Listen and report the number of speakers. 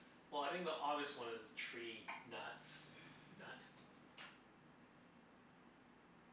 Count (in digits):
1